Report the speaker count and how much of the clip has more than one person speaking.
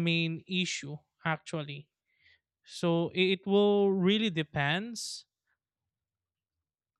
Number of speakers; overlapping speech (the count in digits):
1, no overlap